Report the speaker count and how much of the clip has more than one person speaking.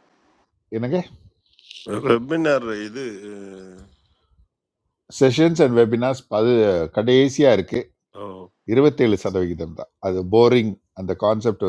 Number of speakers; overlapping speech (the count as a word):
two, no overlap